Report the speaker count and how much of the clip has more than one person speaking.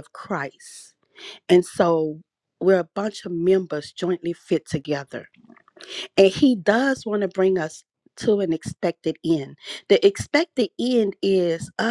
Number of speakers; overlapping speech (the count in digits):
1, no overlap